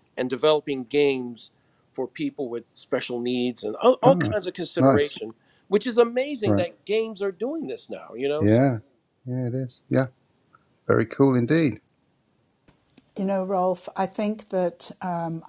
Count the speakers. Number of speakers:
3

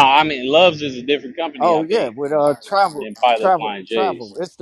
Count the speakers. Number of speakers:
2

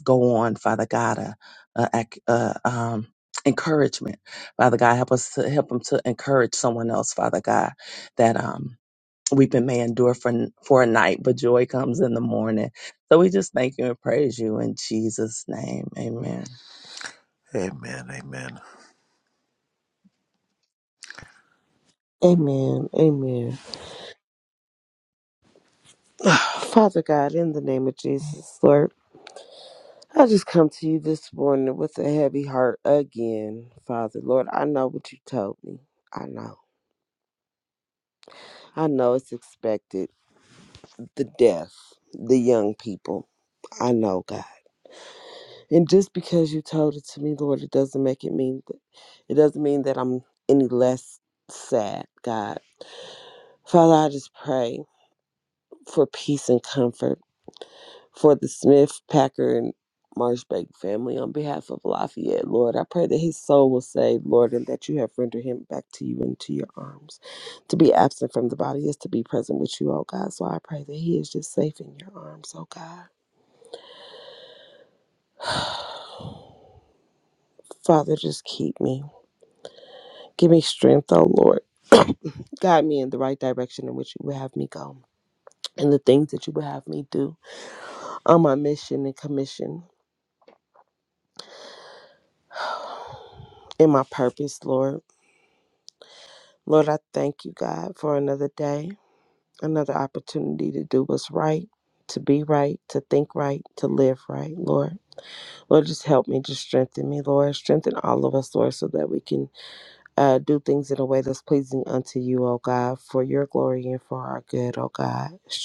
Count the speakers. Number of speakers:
3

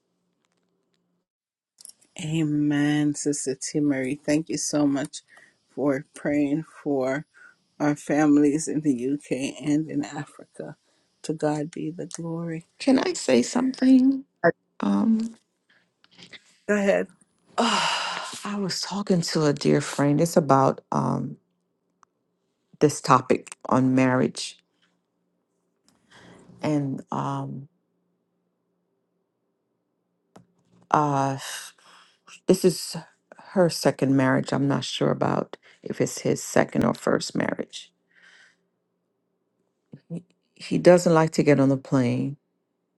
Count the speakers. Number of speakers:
2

